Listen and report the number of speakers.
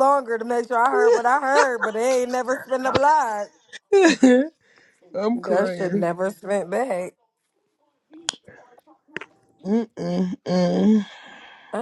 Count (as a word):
two